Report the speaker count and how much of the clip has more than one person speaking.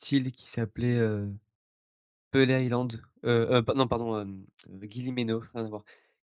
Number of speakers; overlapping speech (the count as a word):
one, no overlap